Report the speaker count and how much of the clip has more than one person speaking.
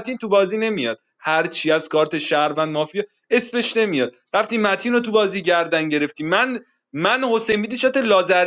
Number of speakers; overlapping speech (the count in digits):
1, no overlap